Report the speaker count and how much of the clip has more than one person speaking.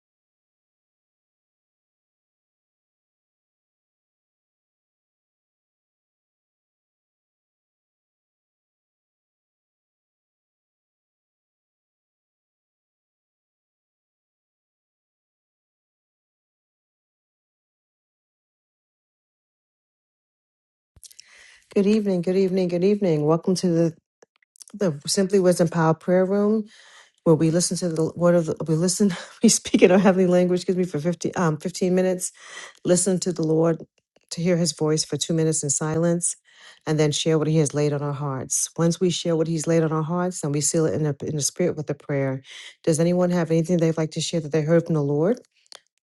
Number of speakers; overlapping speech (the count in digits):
1, no overlap